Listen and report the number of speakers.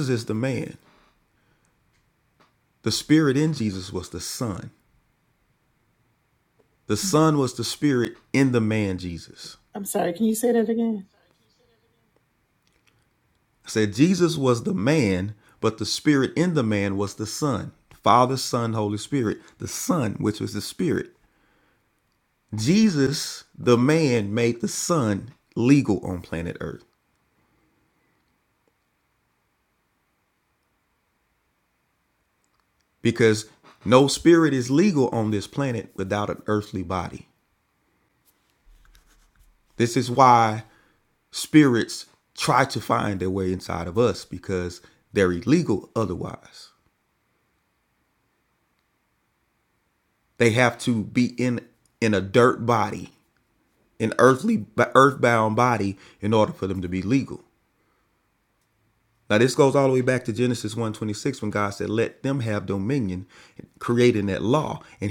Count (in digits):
2